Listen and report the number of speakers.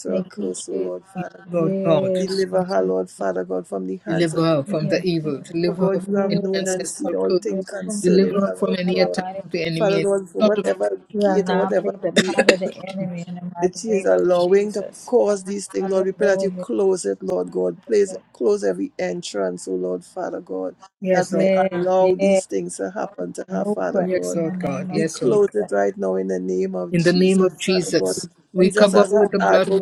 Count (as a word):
three